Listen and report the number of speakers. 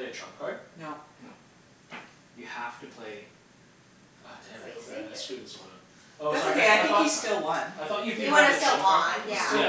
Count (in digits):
4